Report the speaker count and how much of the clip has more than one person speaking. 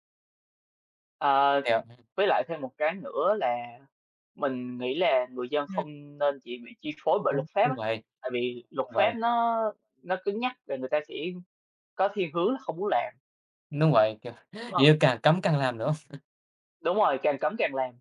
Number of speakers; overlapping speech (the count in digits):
2, about 6%